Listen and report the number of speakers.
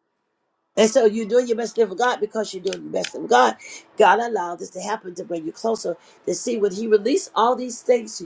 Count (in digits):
1